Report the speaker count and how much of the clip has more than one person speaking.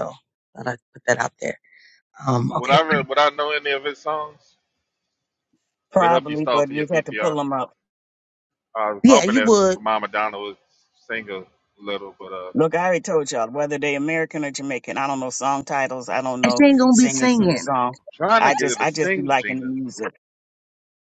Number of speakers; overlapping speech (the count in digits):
3, about 22%